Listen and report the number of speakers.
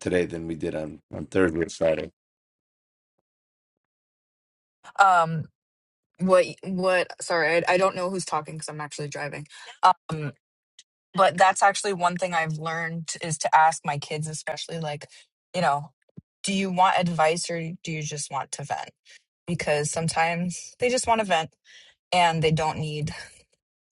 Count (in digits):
2